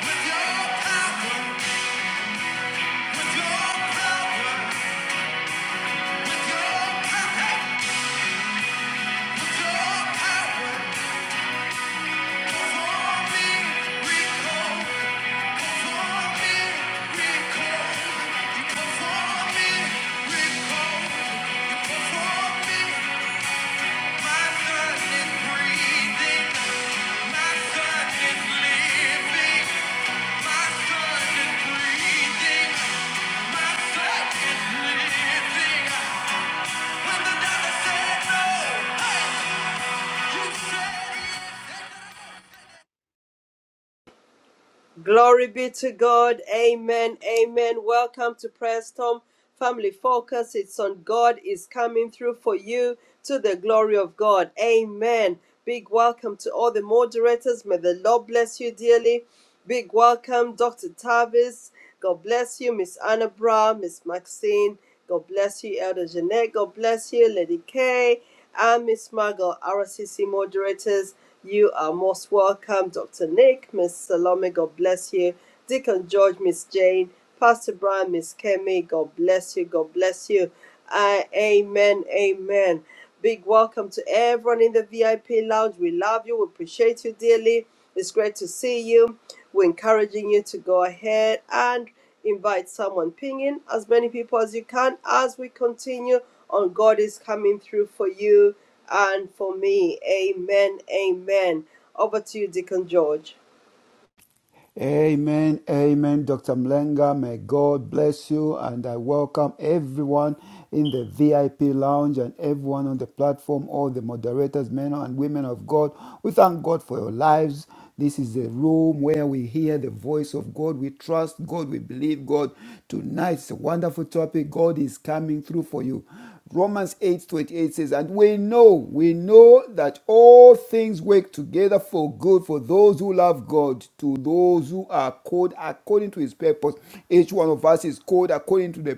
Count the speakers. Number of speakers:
three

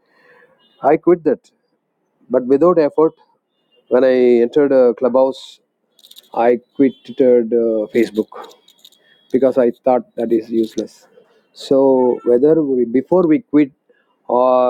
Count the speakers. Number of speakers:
one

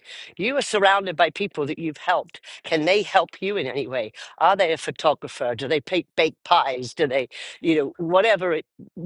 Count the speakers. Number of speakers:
one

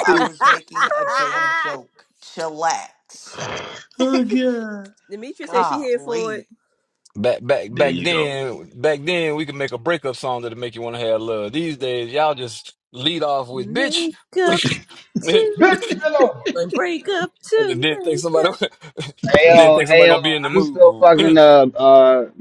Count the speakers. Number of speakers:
five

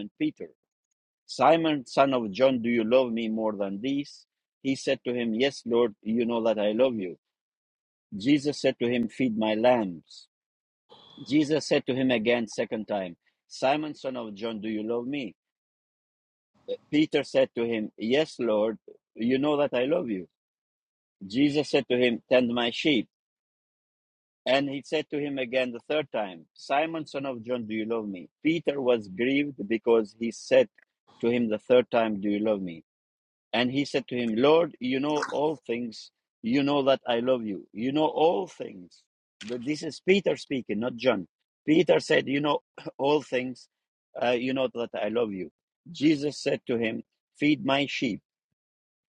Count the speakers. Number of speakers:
one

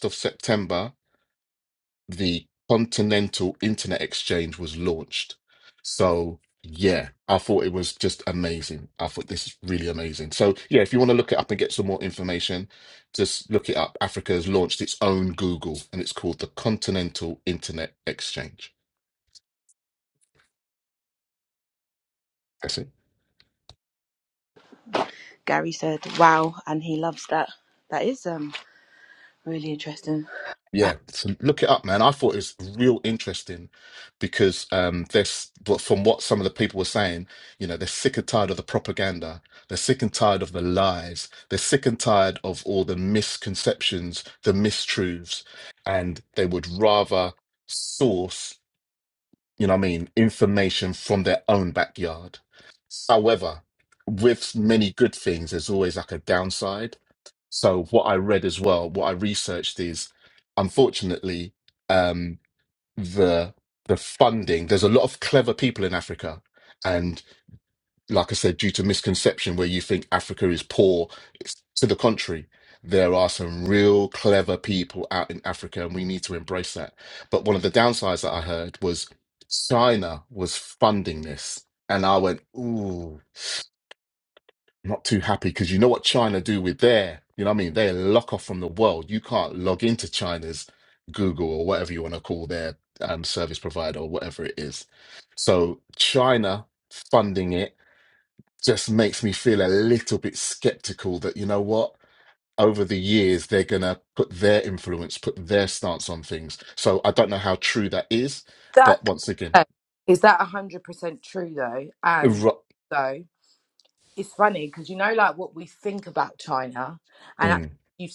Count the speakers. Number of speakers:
three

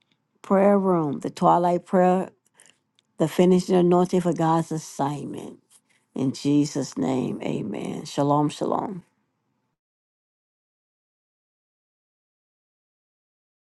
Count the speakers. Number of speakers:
one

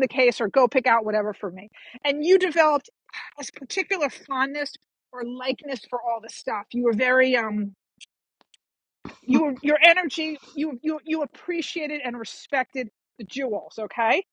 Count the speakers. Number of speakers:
one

